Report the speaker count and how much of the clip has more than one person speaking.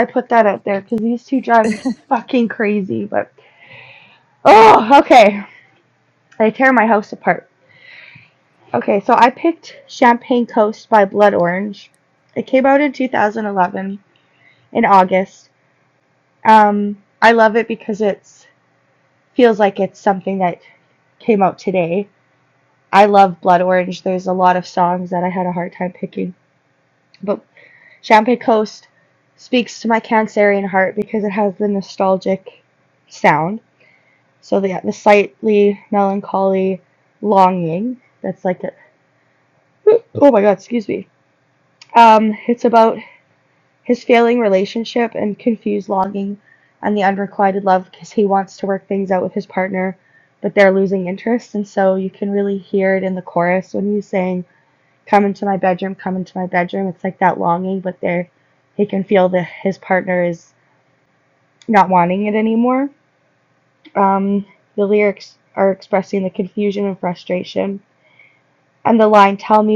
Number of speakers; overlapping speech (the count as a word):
one, no overlap